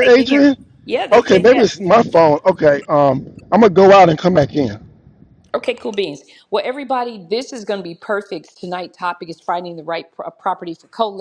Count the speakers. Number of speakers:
two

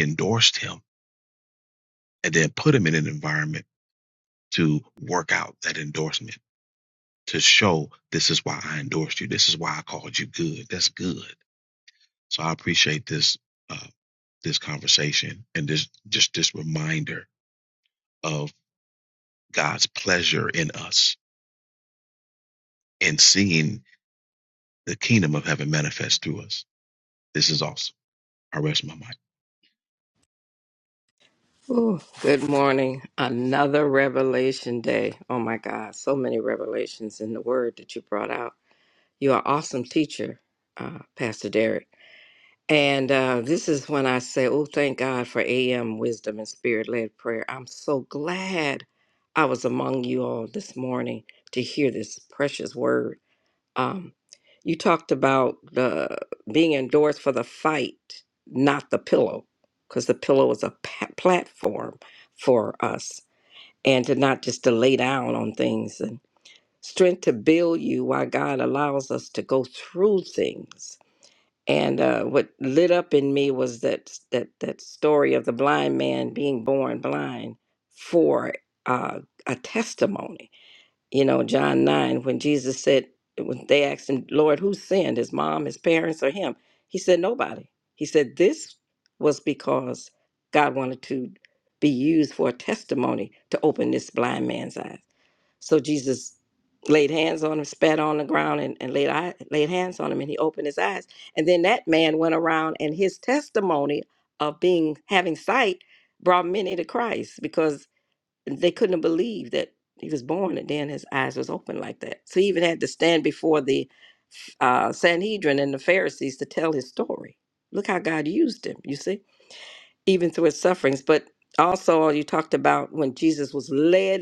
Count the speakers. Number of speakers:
two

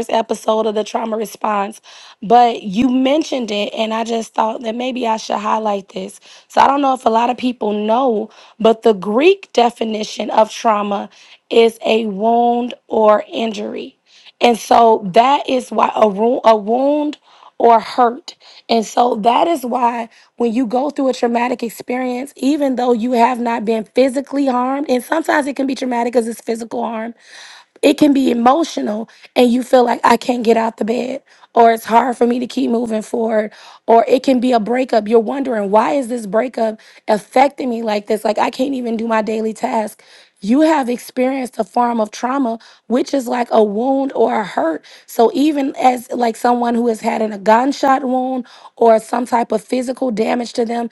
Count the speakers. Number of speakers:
one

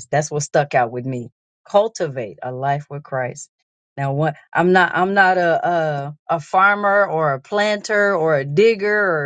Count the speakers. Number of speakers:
one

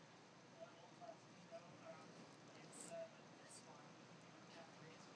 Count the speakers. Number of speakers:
zero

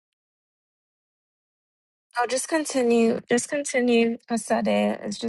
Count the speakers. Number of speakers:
one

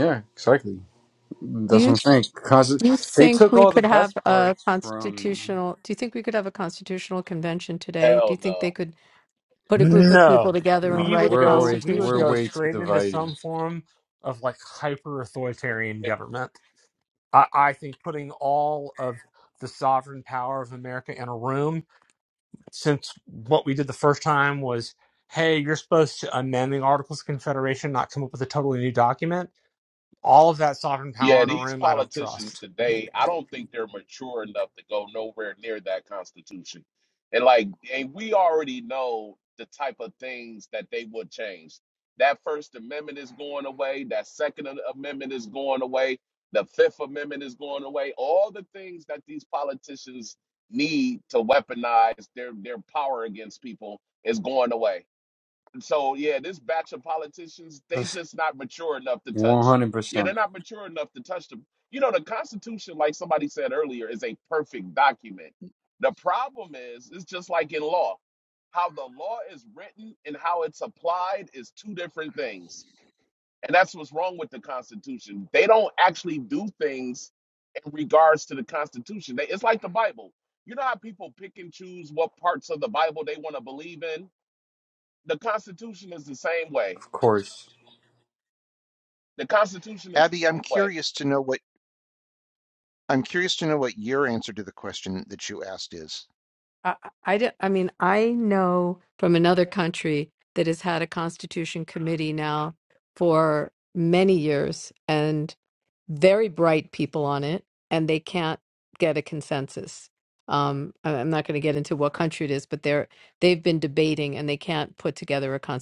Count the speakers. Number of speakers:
five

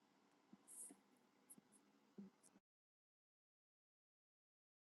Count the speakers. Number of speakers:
zero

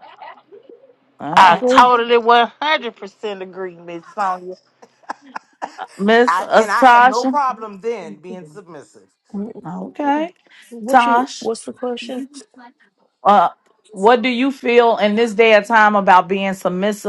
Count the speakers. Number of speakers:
four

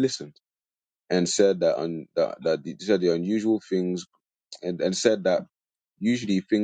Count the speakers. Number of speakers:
one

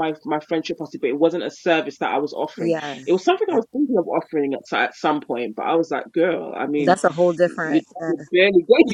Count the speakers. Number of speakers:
two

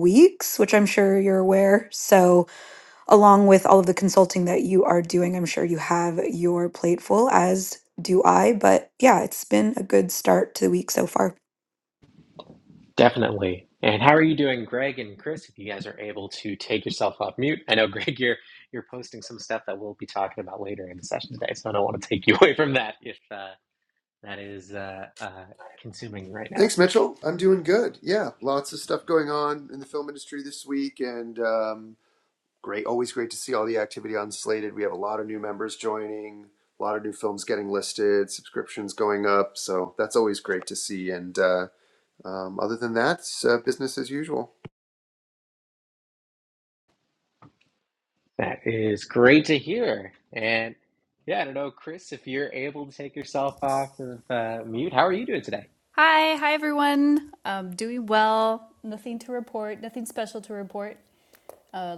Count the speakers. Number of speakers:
four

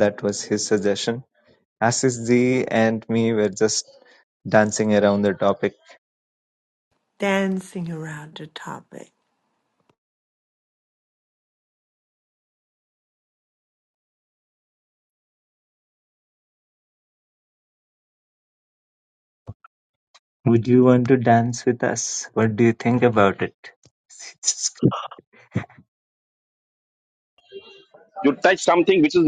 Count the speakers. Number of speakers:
three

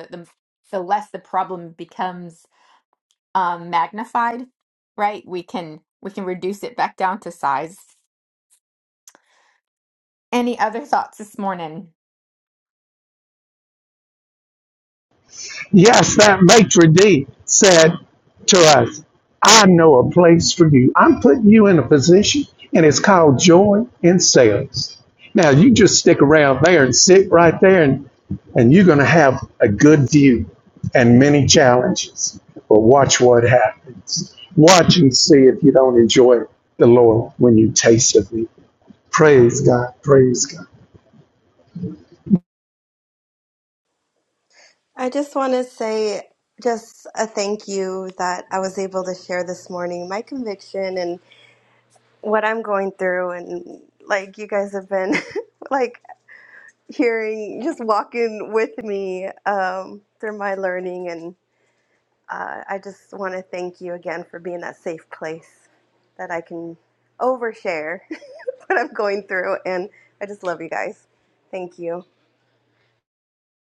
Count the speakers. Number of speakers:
three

